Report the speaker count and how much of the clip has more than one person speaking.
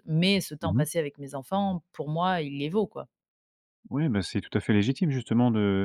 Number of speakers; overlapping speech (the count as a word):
two, about 4%